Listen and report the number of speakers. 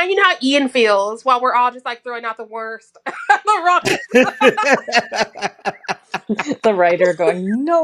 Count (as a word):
three